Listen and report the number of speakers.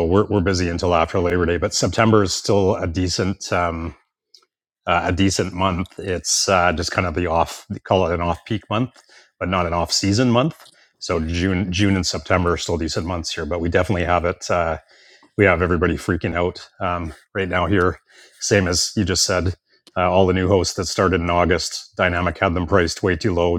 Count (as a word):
one